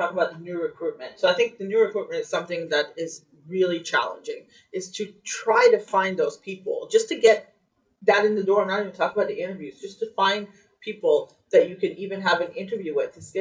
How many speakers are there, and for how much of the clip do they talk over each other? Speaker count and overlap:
1, no overlap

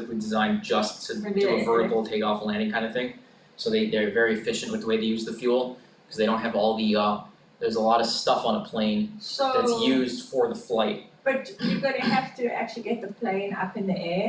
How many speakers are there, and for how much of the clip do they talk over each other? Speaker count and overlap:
2, about 8%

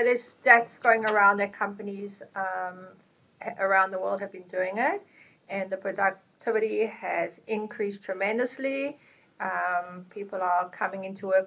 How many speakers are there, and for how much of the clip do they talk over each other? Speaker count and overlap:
1, no overlap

